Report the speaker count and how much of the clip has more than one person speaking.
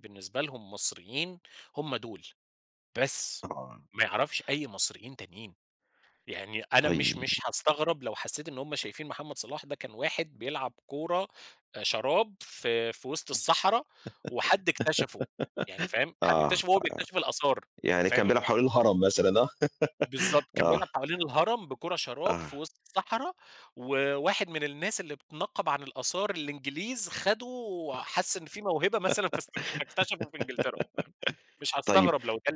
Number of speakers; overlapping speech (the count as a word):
two, about 7%